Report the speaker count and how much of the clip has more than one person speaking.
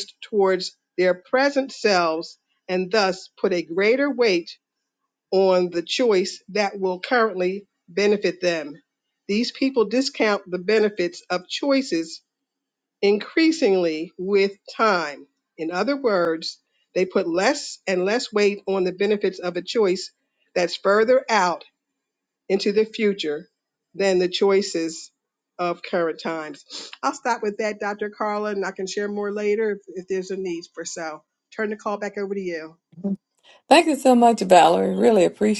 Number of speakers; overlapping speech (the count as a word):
two, no overlap